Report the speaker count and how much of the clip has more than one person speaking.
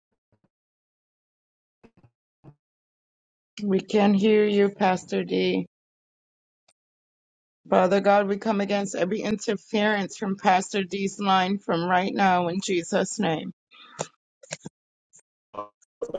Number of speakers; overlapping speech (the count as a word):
one, no overlap